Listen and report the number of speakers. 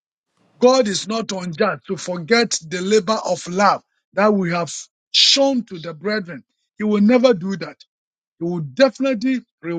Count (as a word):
one